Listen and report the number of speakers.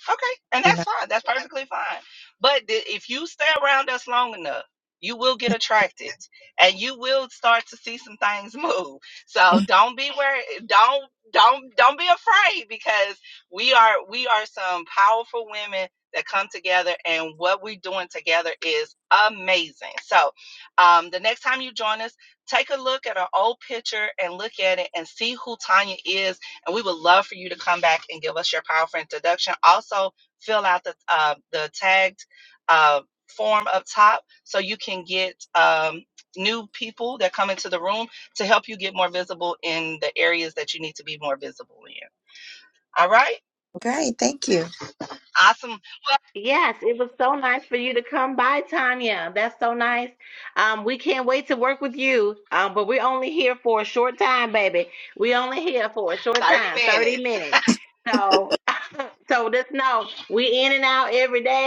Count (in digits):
3